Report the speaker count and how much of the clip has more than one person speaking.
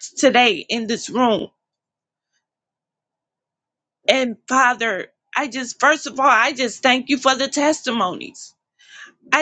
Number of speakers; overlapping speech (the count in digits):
1, no overlap